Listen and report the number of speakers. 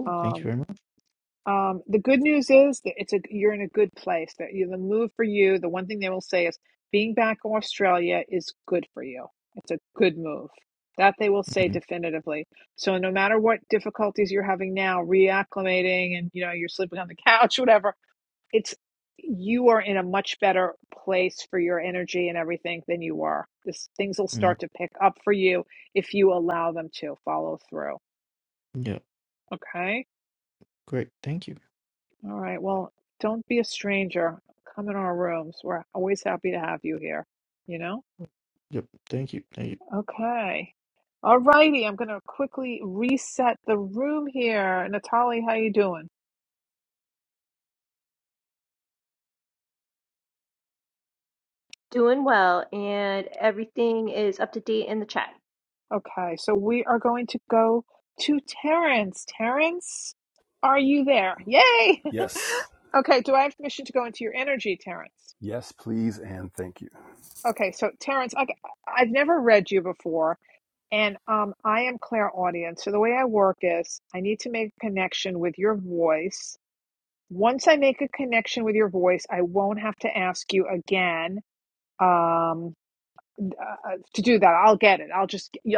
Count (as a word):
four